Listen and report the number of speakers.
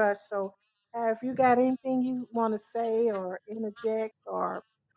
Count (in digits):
1